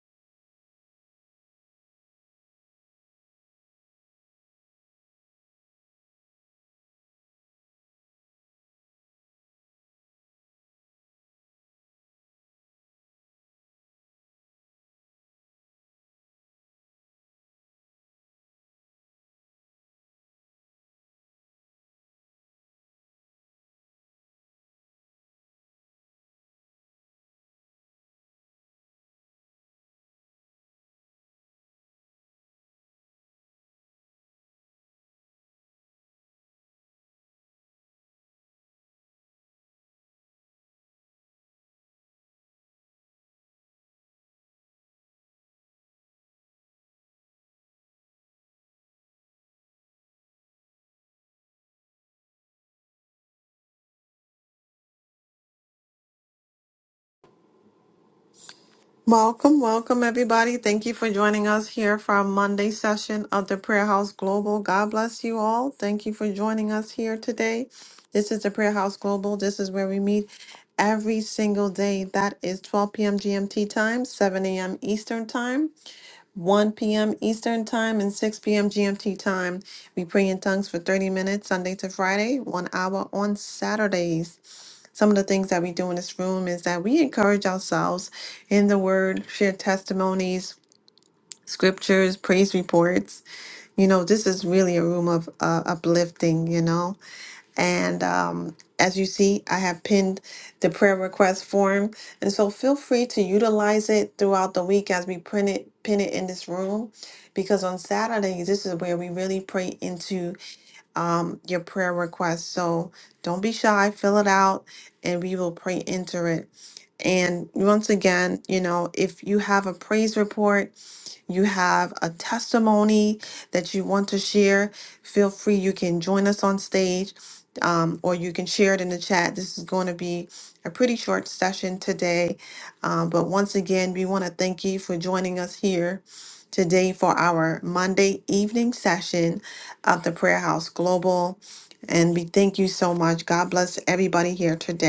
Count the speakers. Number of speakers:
1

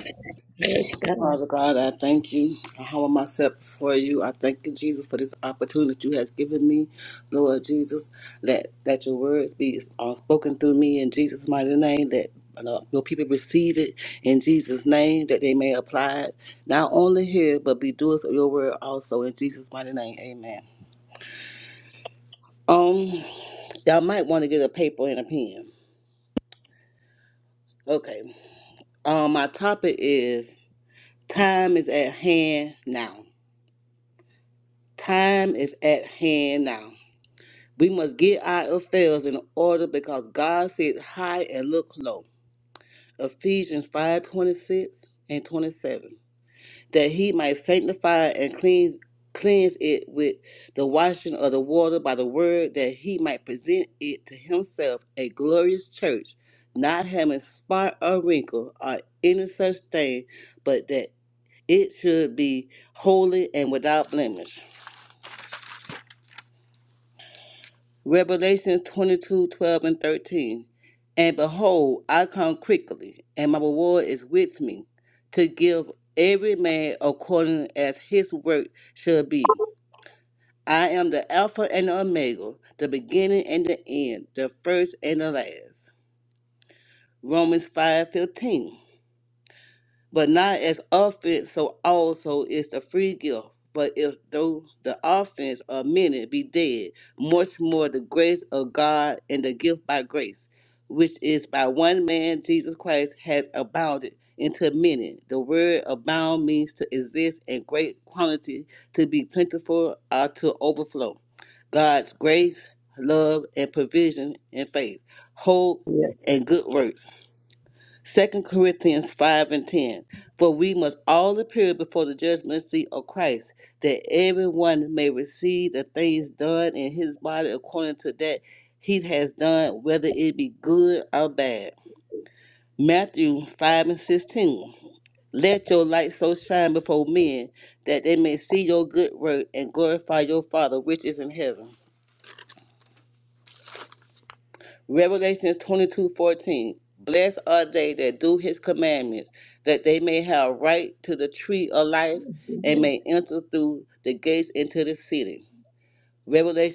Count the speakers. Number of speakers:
2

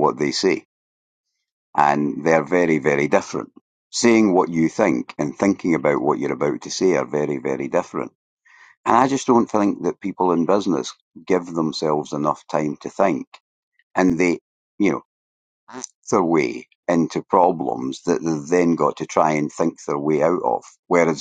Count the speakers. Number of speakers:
1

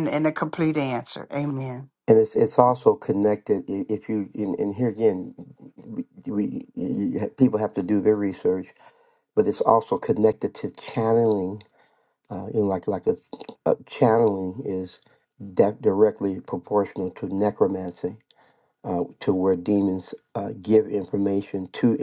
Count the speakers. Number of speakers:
2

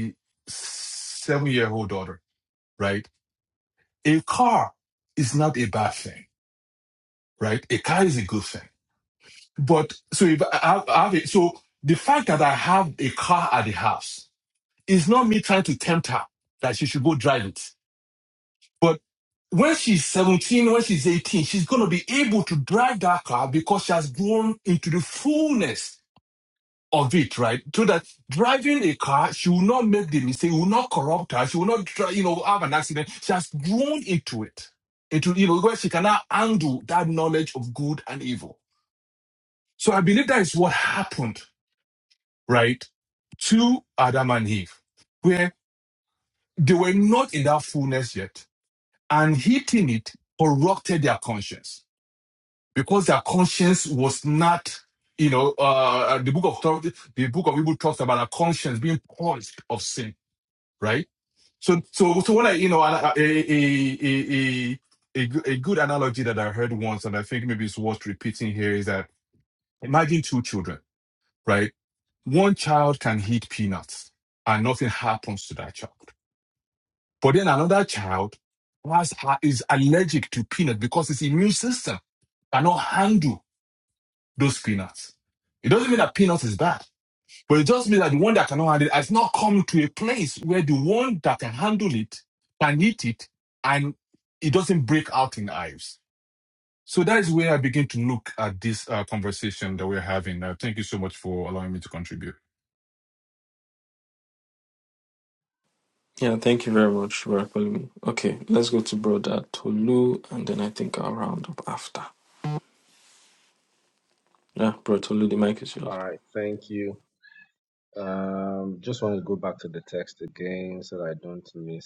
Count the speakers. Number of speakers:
3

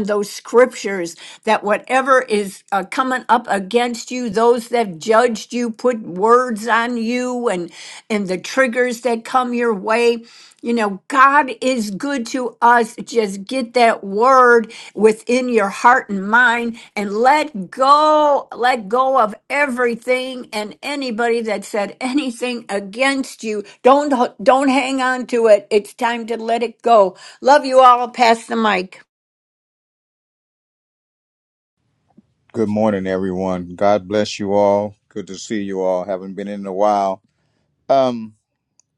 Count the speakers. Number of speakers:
2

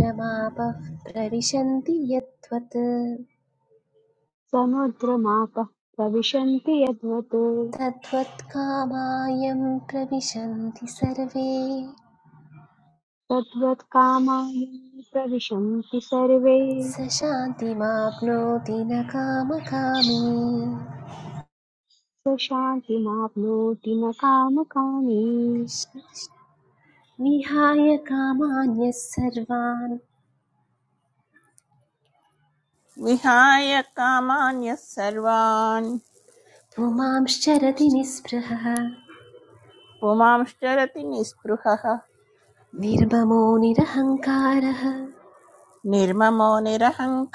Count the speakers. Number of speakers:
3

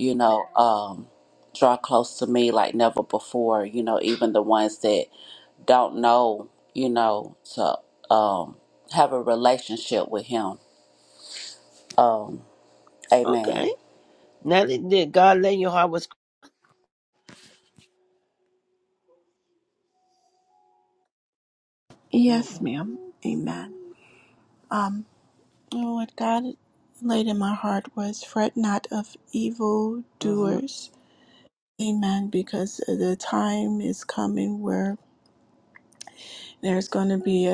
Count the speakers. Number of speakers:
3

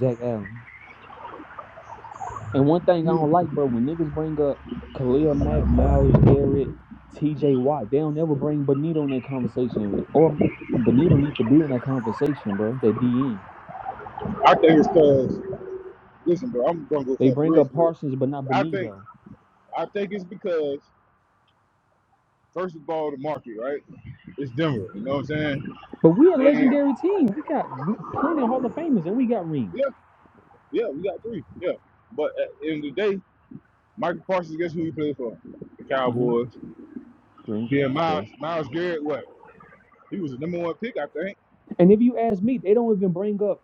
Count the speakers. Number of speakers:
2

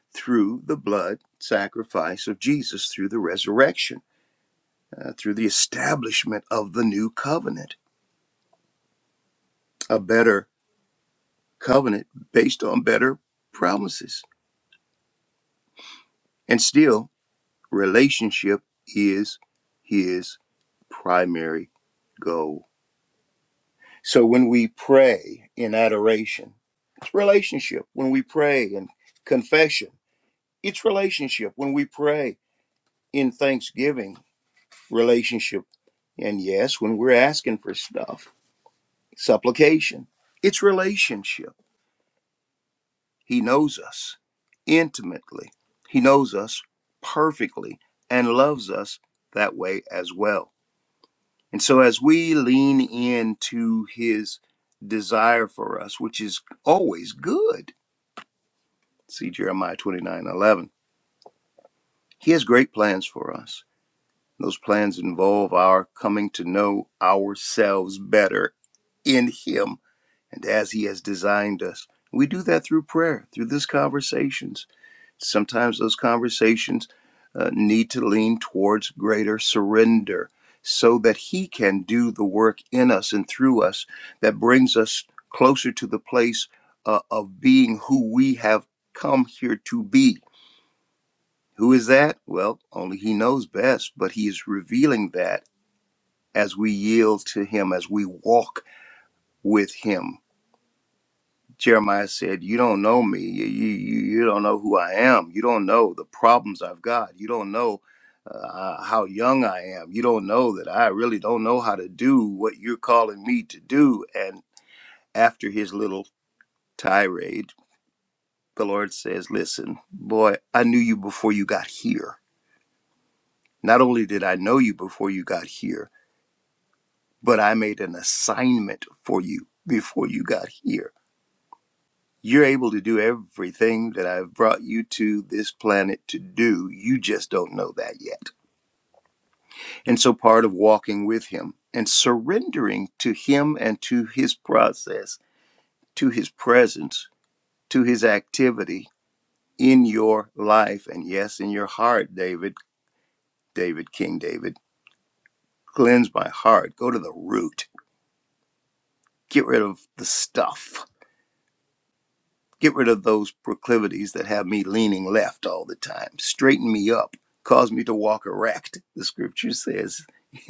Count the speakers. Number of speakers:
1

